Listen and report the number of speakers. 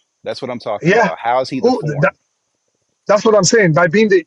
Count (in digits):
2